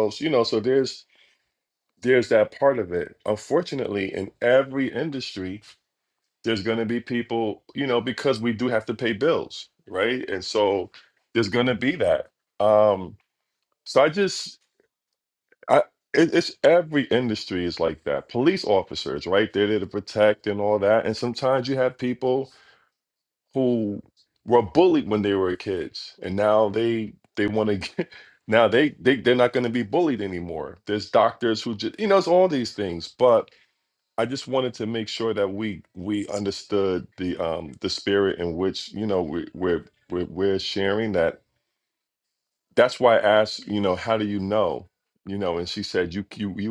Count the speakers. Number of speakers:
one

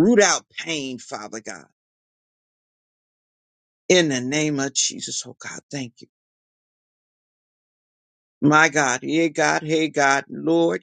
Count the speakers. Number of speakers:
one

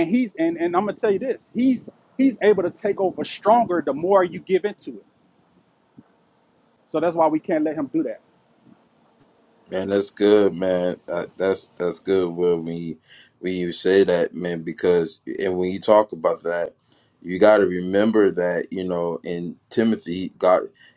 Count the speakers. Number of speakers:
two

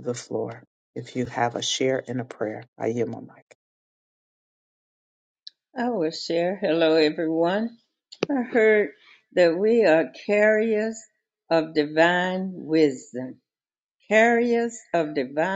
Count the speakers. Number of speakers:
two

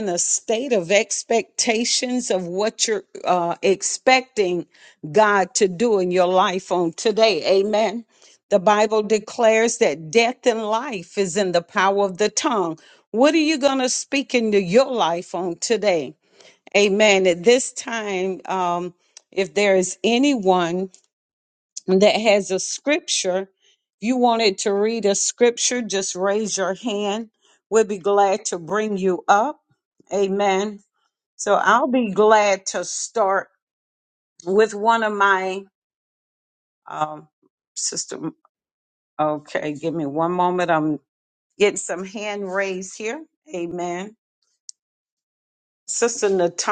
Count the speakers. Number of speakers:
one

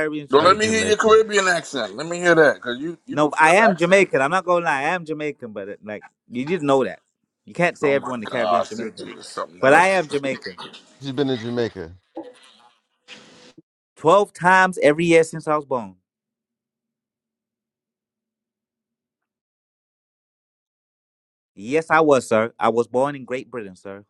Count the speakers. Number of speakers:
three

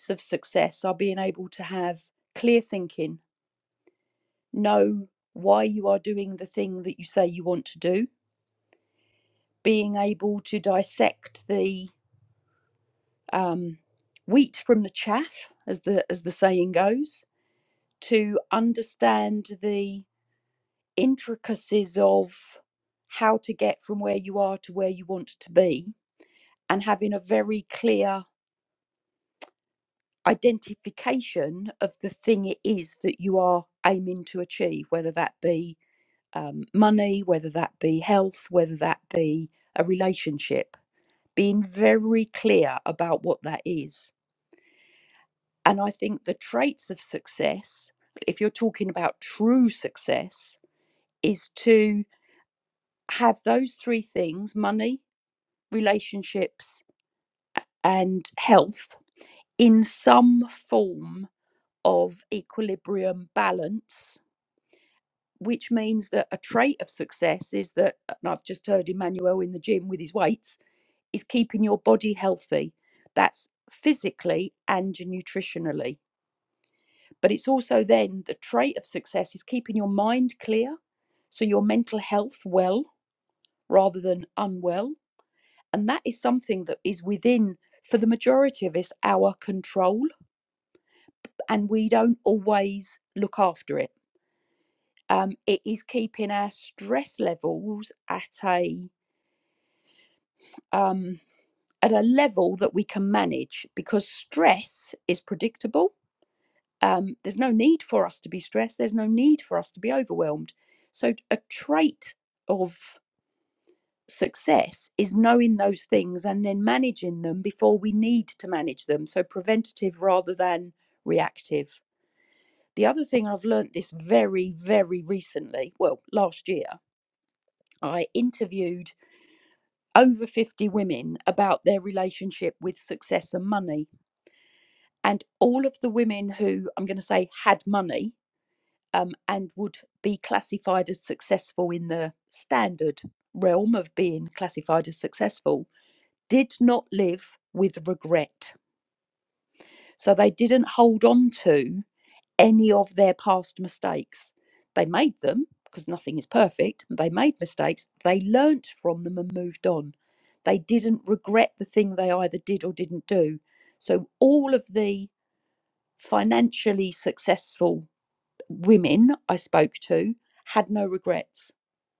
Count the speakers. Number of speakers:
one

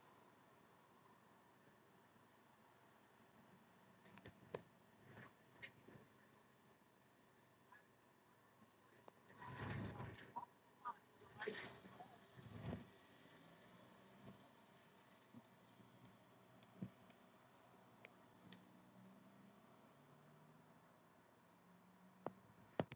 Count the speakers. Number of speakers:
zero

